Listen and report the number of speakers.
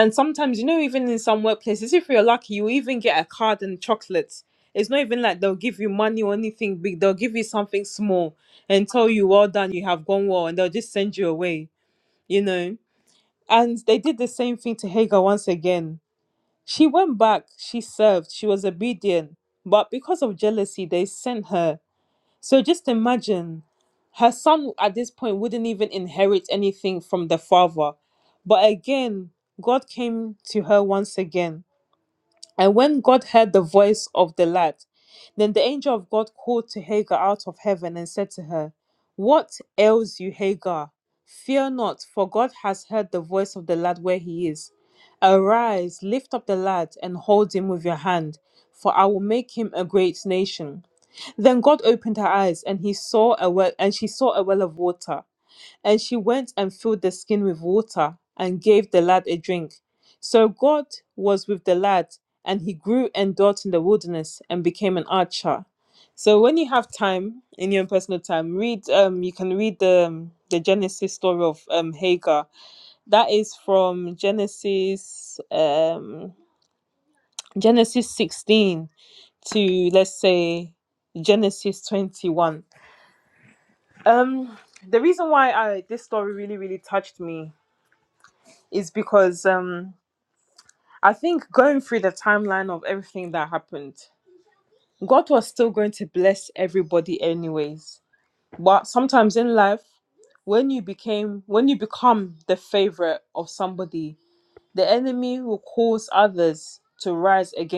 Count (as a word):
one